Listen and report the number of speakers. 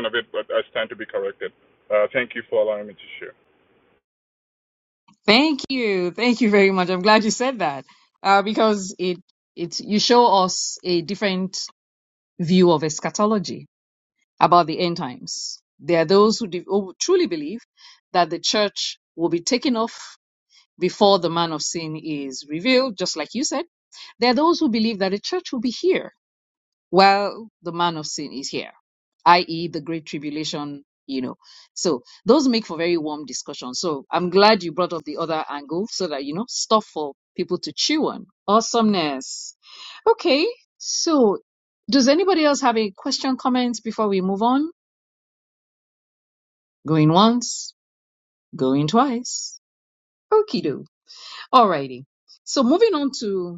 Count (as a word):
two